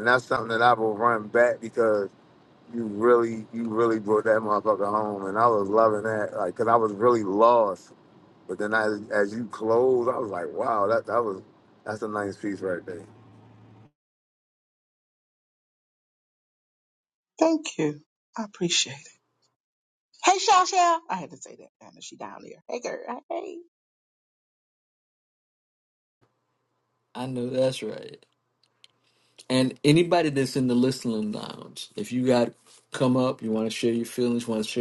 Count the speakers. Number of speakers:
three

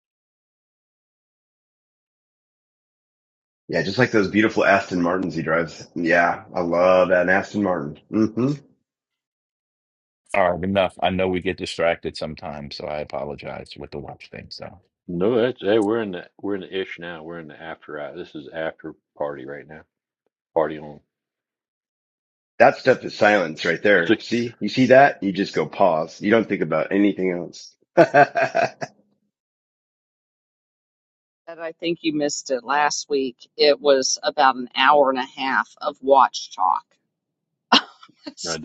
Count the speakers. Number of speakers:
four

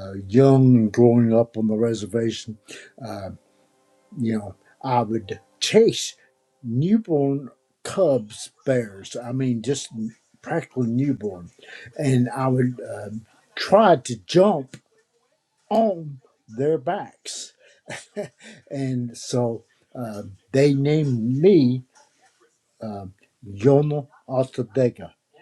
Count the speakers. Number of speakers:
one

